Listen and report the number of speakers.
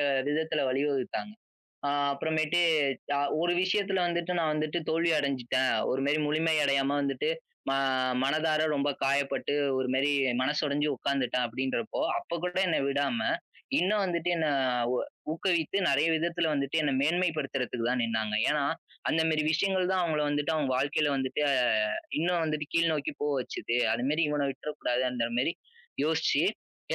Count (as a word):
one